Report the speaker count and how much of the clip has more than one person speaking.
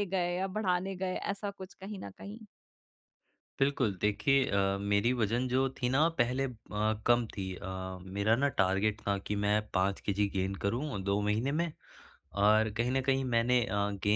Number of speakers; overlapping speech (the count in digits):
2, no overlap